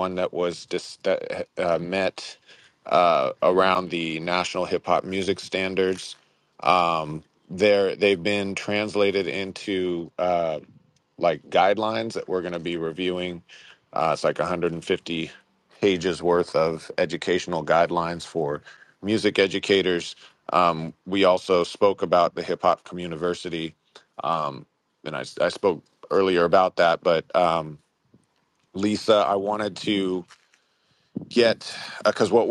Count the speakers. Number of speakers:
1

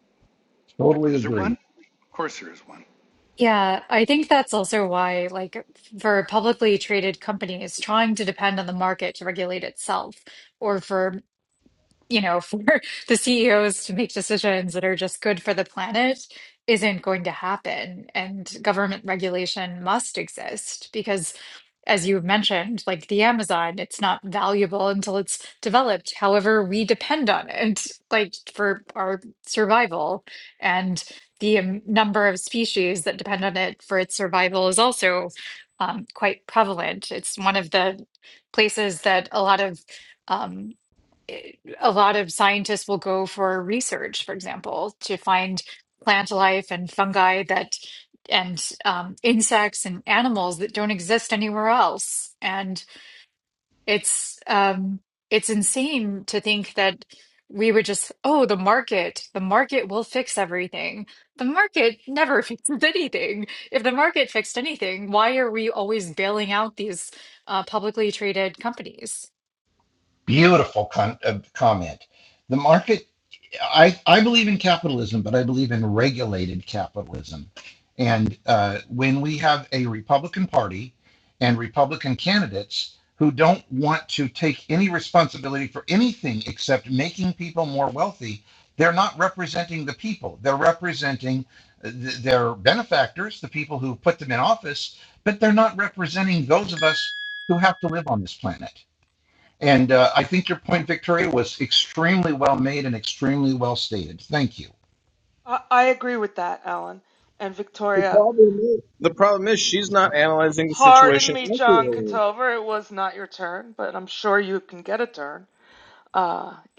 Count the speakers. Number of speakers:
5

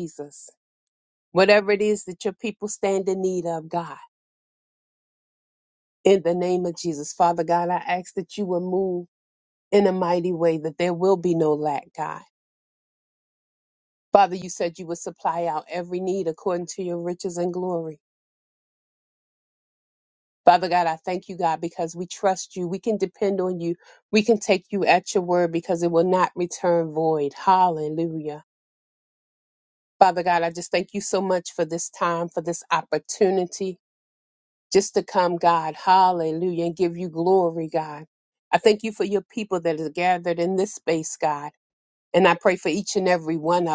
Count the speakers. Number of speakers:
1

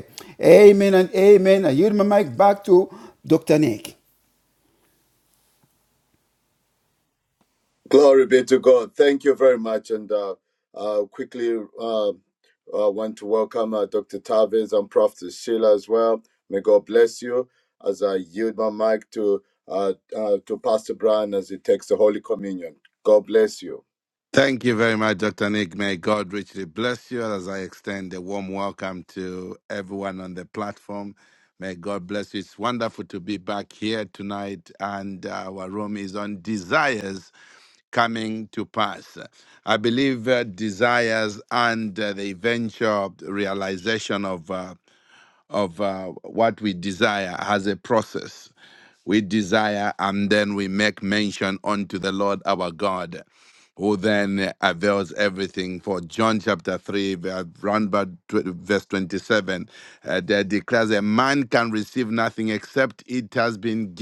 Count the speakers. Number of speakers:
3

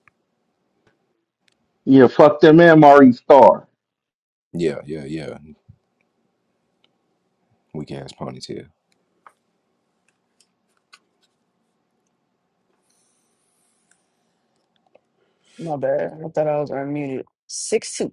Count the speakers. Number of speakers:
3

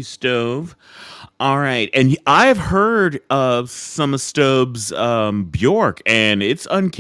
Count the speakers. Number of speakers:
1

